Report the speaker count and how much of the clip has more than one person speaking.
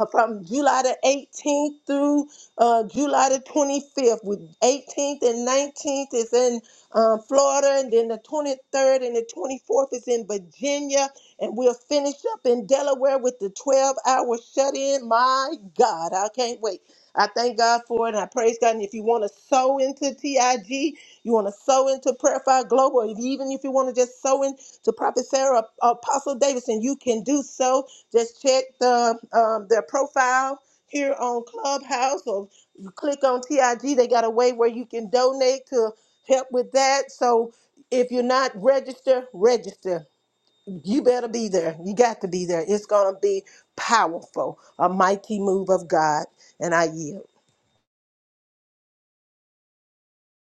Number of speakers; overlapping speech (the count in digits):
1, no overlap